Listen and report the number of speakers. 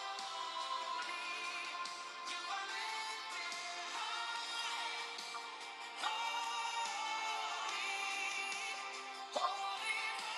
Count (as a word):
zero